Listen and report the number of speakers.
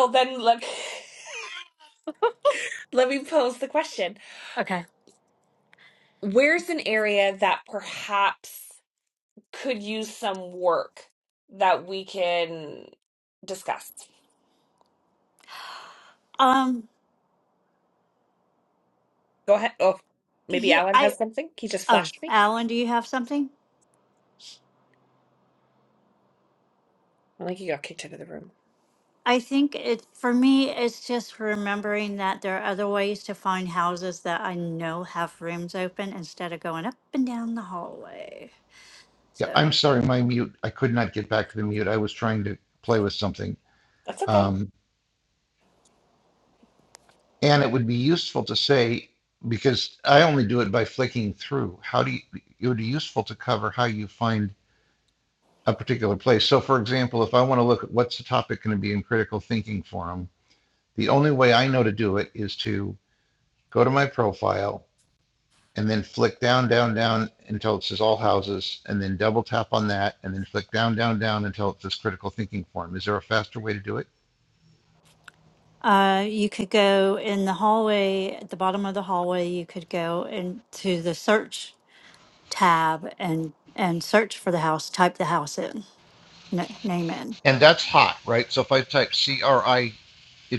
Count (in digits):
3